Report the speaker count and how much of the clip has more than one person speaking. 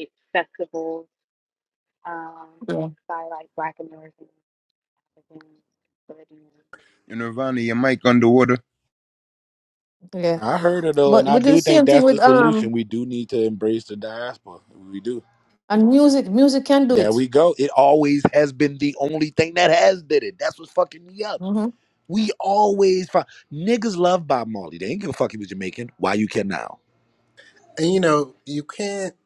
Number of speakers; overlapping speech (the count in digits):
5, about 6%